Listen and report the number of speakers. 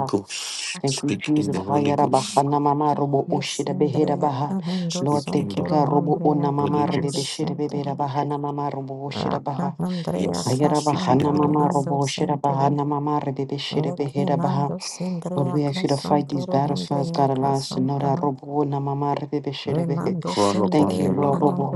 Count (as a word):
three